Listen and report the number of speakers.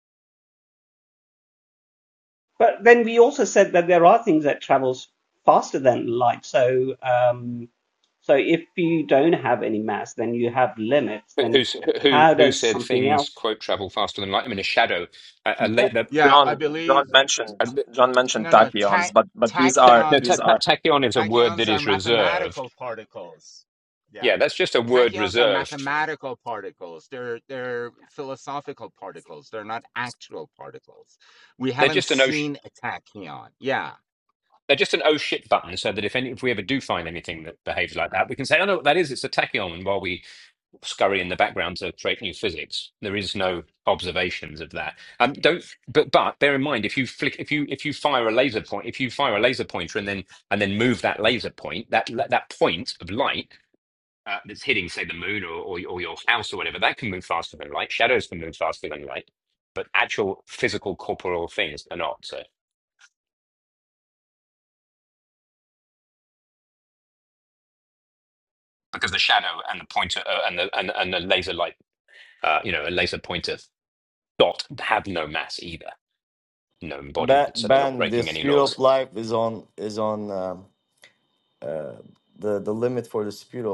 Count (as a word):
five